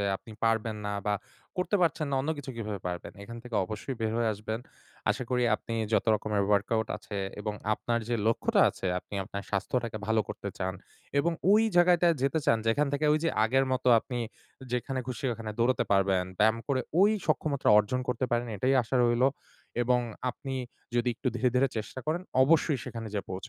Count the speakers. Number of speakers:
1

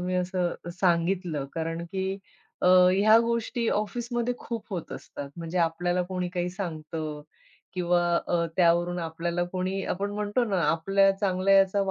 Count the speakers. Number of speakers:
1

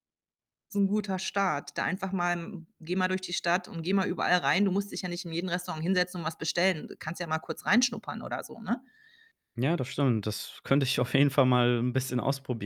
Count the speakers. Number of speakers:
2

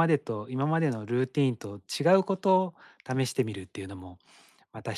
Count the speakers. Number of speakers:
1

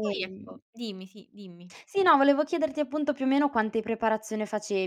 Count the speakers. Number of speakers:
2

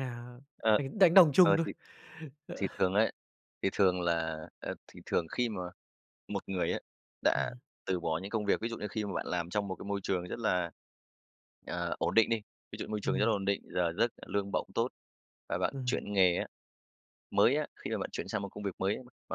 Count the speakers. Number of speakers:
2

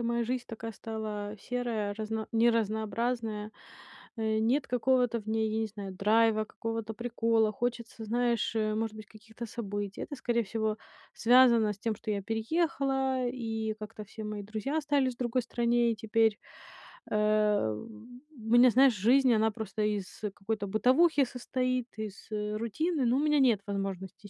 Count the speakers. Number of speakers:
1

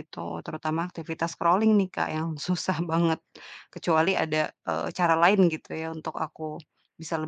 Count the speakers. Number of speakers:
1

